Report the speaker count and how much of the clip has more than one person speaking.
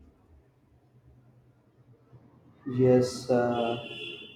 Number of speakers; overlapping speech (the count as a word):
one, no overlap